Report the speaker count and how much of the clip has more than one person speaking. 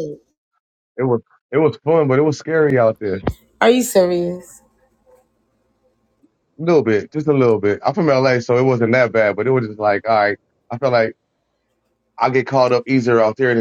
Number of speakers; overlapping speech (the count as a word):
two, no overlap